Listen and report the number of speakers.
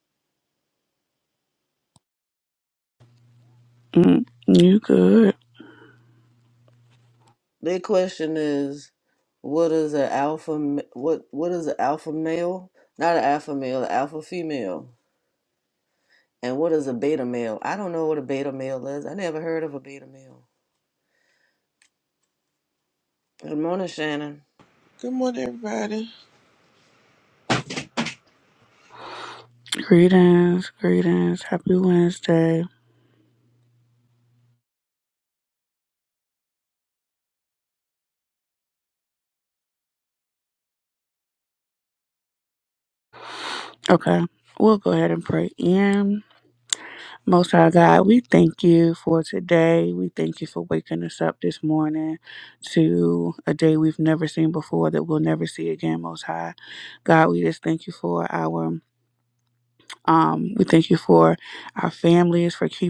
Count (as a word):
three